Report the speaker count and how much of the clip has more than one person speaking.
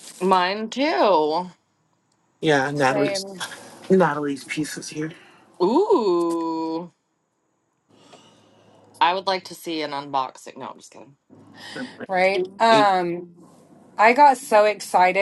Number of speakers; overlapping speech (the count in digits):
3, about 5%